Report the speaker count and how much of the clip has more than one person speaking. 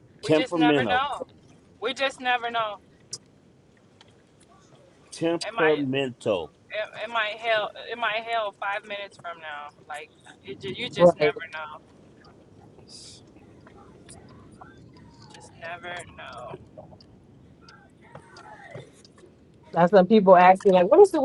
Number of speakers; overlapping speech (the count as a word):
three, about 8%